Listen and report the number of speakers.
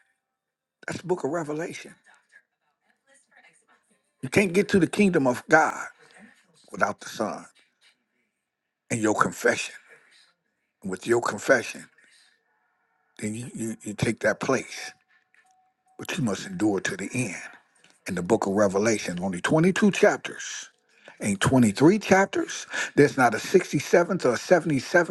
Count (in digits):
1